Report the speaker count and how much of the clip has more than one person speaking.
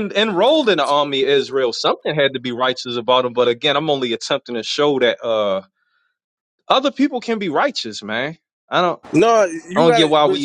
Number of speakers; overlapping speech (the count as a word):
two, about 7%